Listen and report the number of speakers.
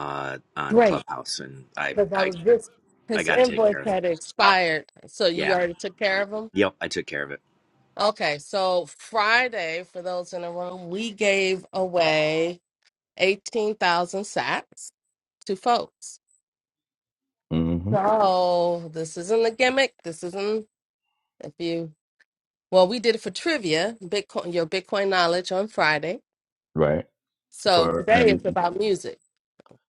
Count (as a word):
three